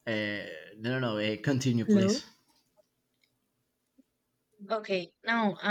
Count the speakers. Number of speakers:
2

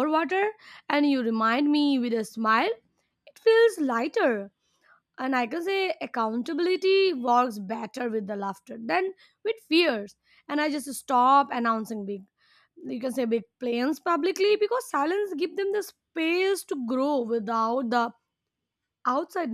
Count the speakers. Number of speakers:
1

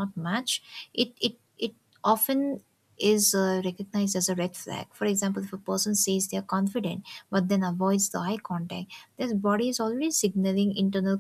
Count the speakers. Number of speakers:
1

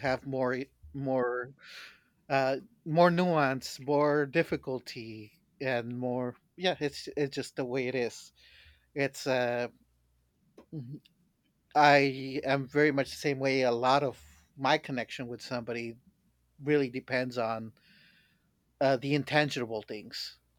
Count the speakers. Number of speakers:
1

